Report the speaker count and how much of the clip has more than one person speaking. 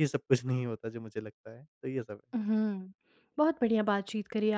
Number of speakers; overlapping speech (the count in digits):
2, no overlap